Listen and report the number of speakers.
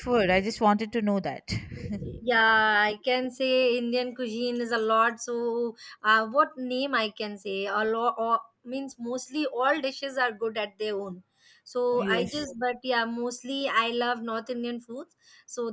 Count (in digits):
2